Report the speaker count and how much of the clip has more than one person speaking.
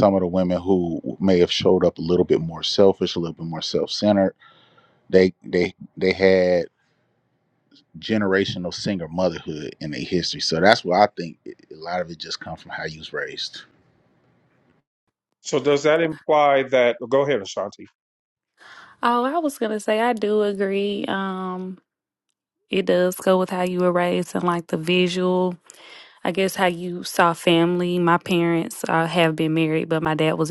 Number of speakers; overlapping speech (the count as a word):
three, no overlap